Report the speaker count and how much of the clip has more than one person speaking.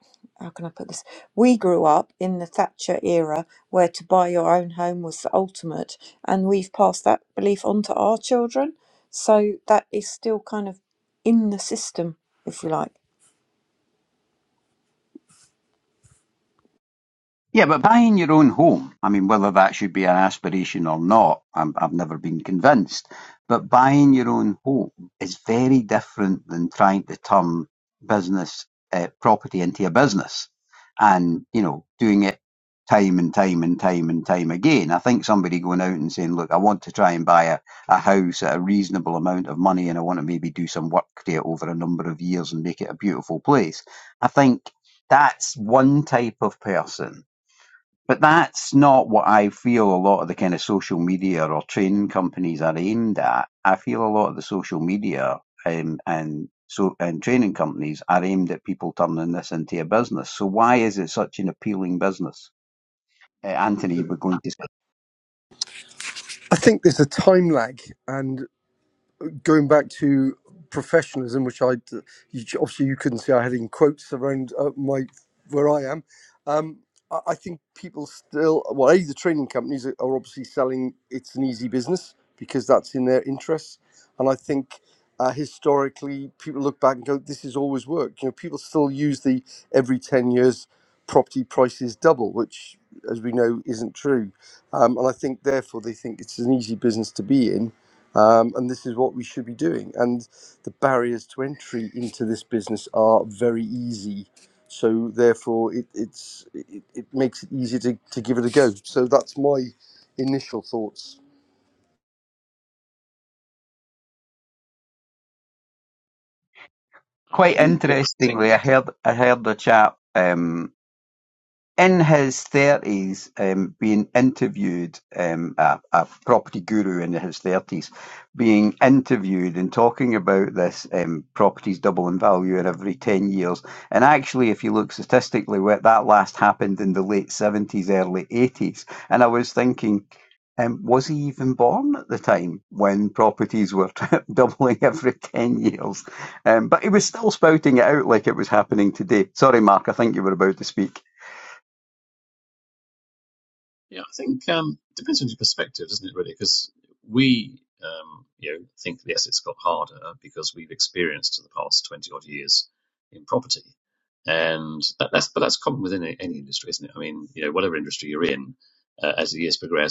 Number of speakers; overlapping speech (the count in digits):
4, under 1%